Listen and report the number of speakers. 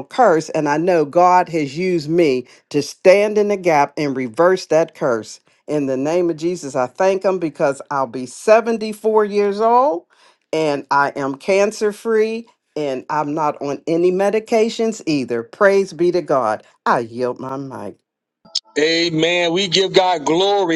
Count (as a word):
two